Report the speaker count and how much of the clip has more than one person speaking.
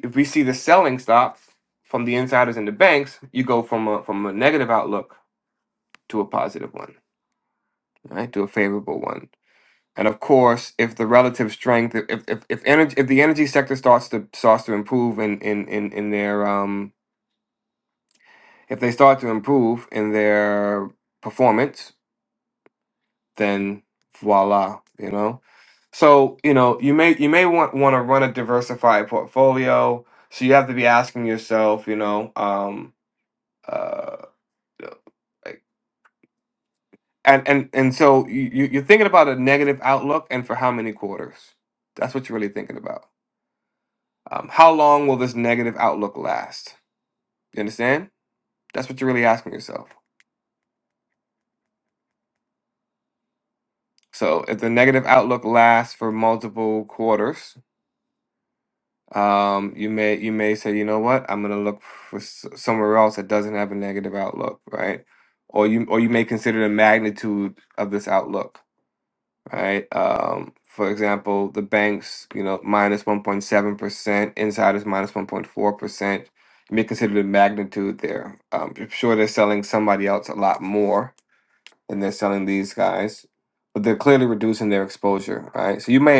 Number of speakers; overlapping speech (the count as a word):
one, no overlap